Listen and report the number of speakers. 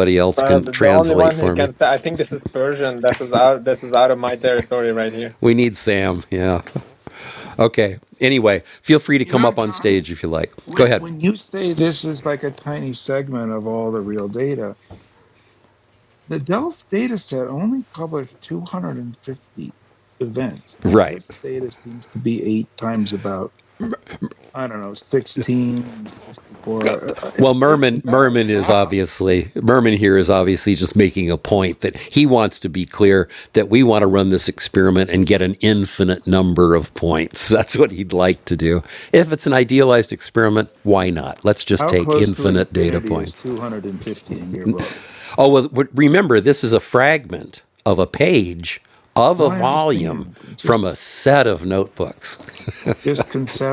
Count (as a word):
three